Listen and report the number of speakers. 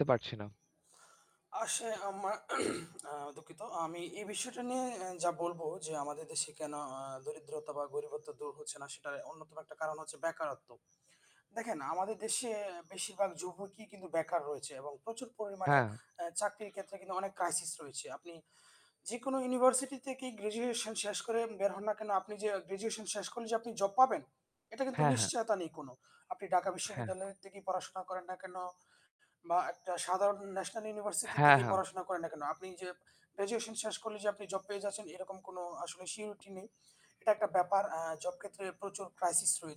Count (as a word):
two